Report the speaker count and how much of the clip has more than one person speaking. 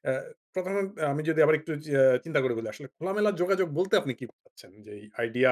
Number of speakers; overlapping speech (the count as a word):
one, no overlap